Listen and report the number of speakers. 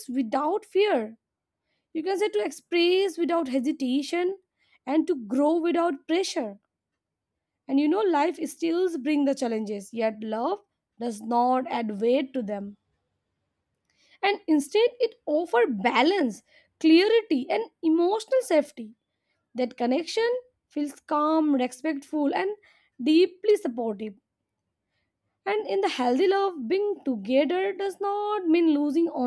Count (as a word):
one